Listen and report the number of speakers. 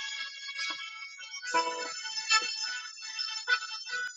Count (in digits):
0